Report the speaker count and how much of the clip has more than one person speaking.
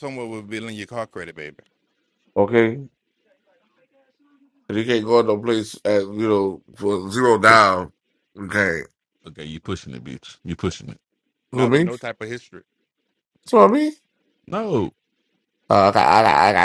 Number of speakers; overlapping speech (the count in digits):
3, about 2%